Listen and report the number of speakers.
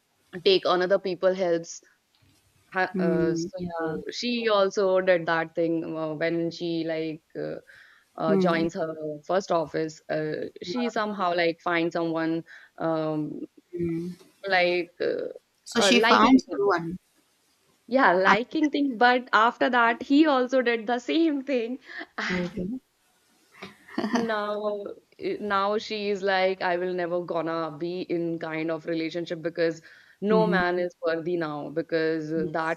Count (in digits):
2